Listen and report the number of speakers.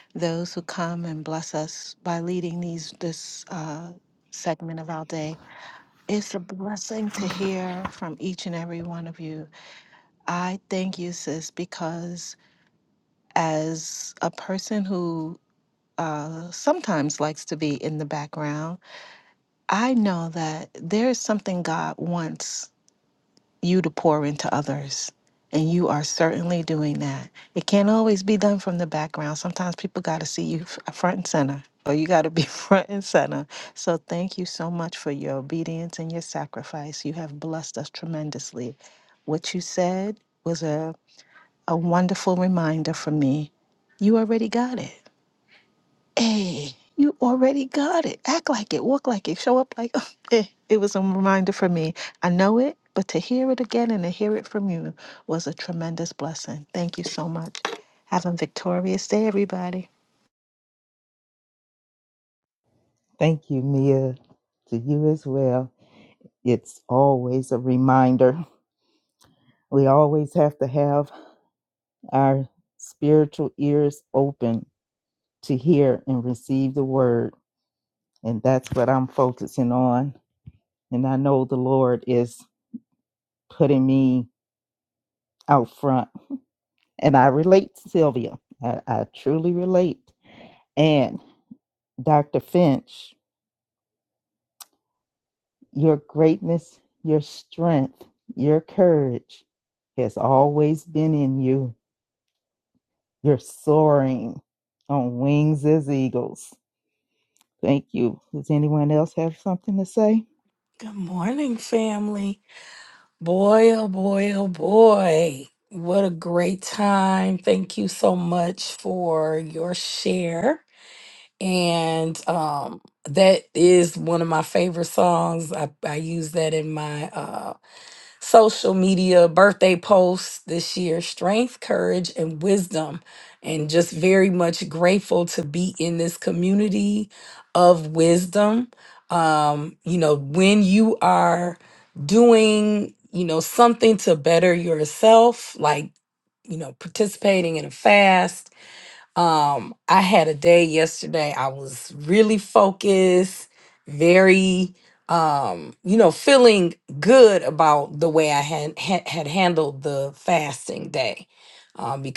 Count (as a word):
three